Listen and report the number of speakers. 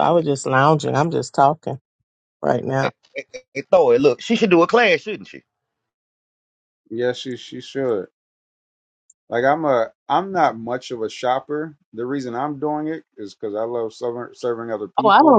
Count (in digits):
3